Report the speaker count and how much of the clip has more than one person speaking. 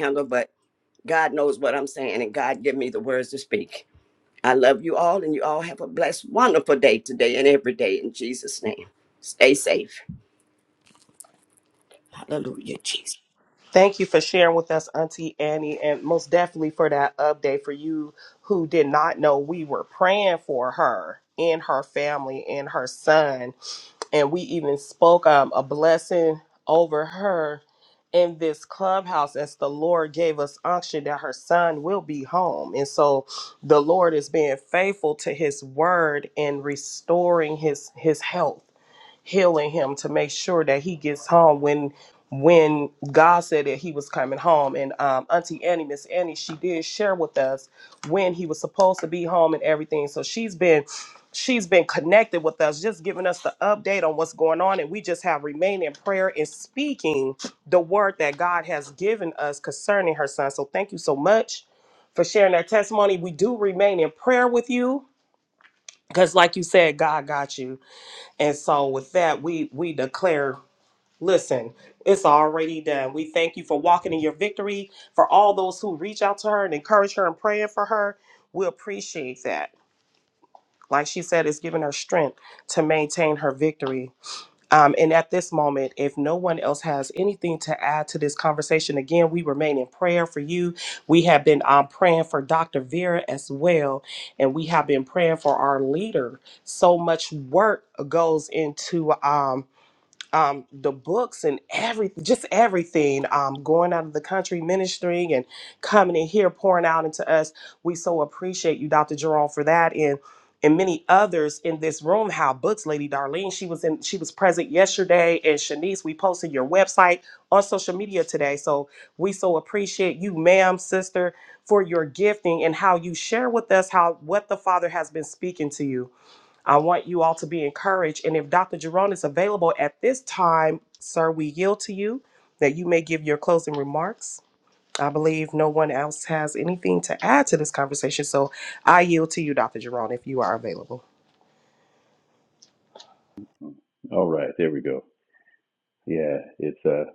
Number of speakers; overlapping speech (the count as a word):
three, no overlap